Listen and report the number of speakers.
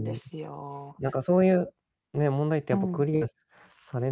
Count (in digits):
2